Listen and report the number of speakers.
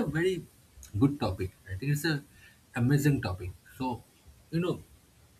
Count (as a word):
one